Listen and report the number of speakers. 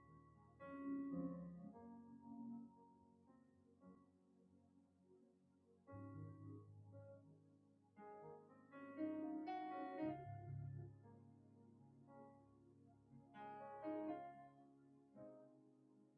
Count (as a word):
zero